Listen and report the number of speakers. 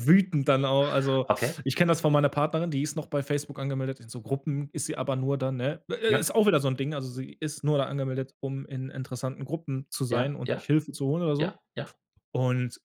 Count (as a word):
two